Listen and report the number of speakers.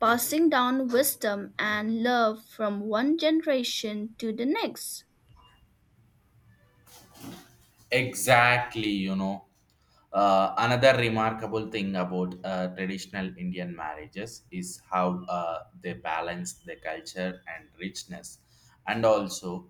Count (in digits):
2